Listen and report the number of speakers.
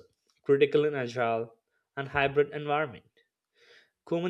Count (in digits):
1